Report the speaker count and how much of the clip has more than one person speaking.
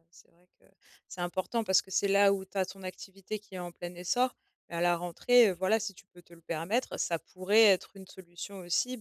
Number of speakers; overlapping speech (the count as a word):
one, no overlap